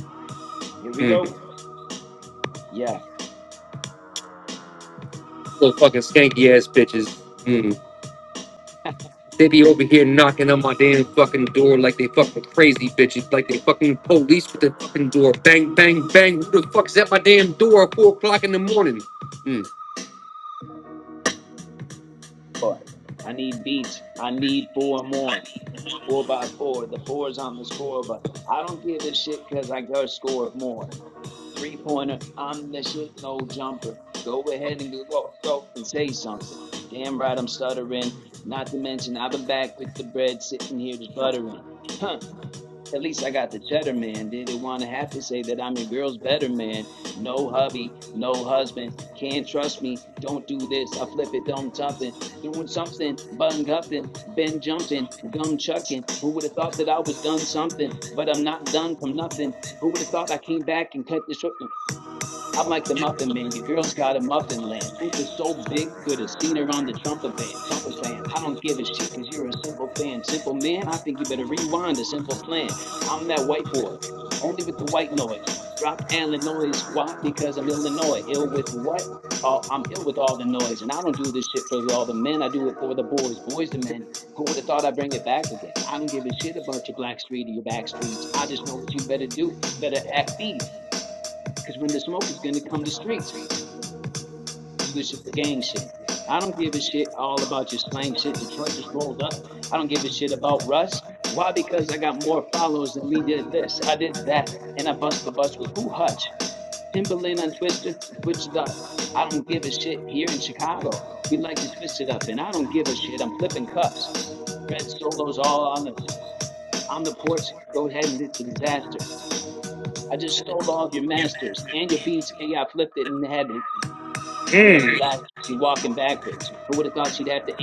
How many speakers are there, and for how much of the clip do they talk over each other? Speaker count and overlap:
2, about 1%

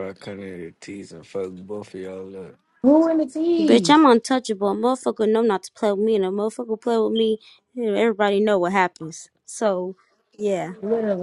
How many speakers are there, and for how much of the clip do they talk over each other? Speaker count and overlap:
3, about 3%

